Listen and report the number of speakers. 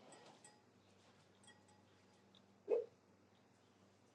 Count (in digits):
0